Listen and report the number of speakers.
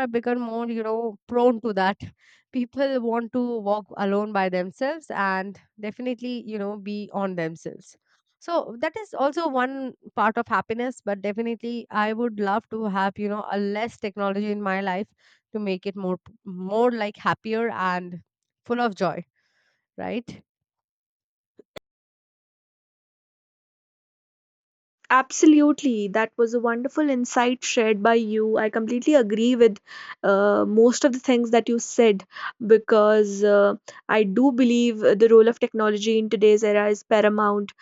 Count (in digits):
2